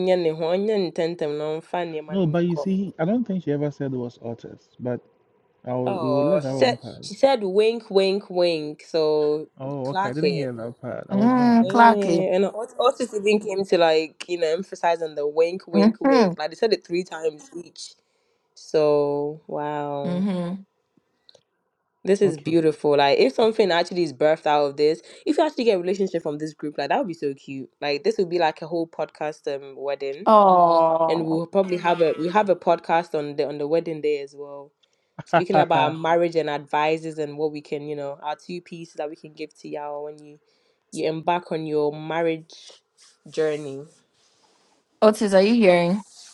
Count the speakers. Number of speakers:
3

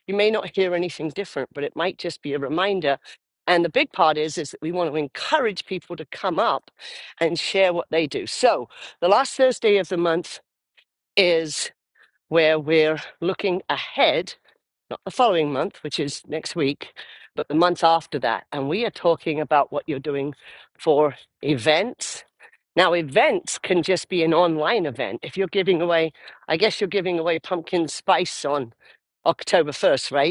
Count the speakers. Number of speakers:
1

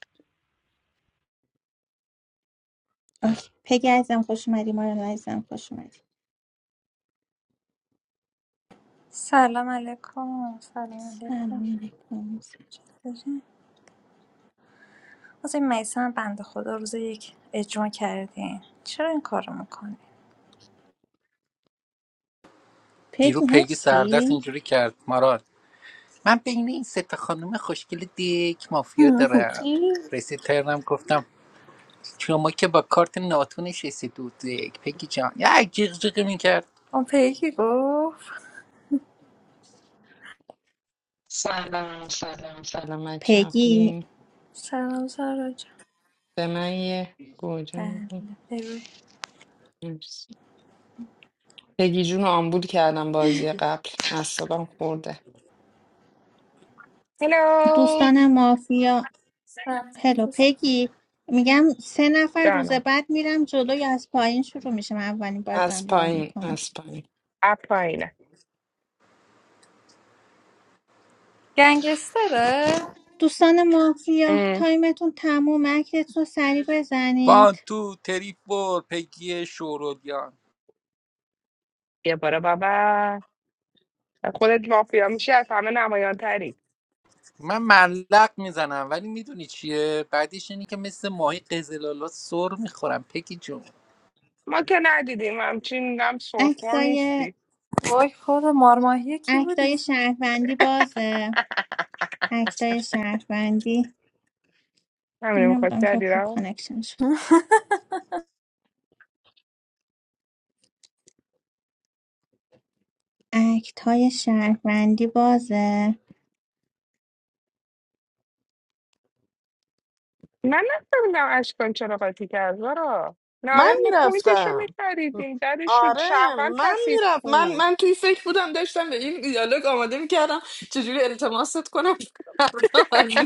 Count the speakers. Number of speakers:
5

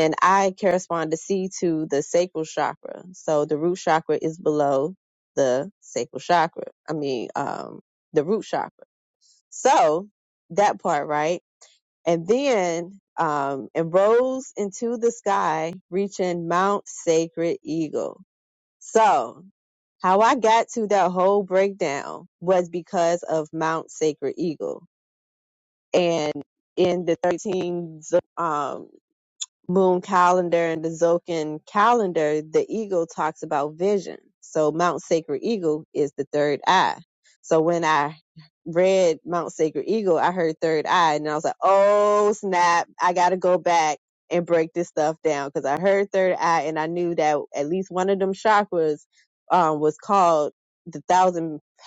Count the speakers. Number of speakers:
1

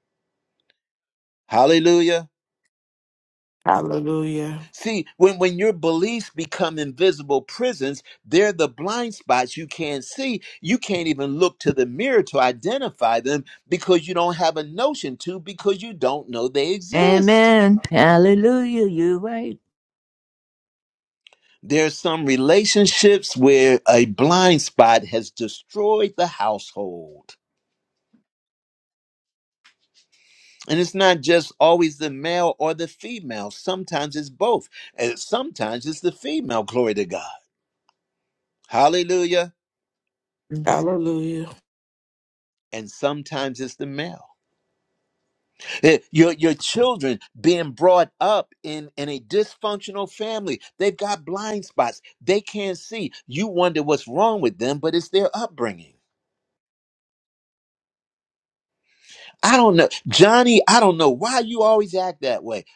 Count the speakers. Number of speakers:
3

